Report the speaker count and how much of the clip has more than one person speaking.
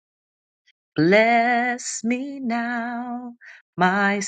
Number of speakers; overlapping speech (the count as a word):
one, no overlap